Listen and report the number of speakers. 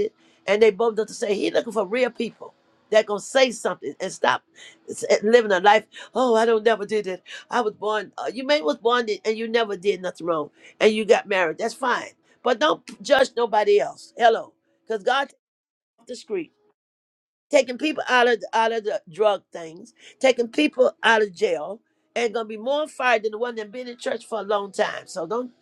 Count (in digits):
1